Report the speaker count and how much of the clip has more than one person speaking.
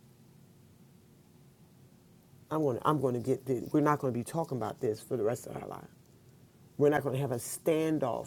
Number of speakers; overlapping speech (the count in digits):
1, no overlap